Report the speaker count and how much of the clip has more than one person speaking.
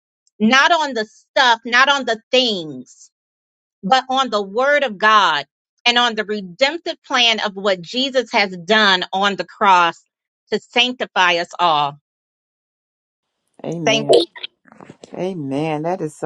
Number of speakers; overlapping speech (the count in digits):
2, about 2%